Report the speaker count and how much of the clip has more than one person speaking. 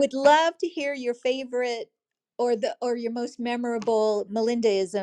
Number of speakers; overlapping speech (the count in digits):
1, no overlap